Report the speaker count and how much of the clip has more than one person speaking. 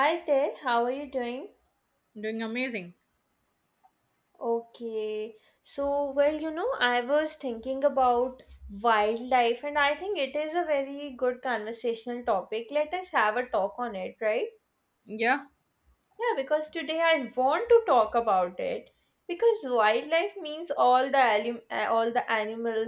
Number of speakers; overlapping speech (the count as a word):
two, no overlap